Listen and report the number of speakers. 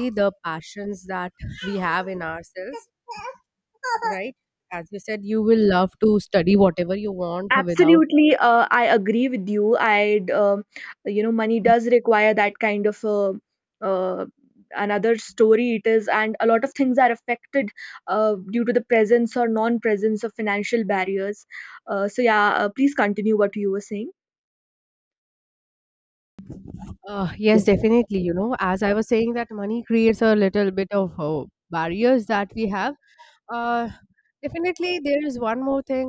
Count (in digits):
2